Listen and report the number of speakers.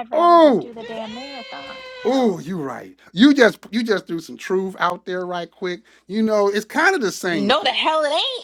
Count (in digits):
3